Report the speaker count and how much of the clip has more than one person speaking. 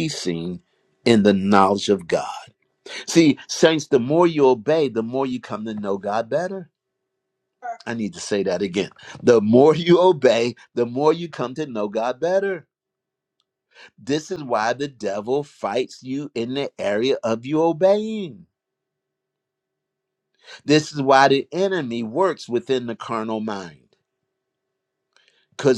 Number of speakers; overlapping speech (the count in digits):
1, no overlap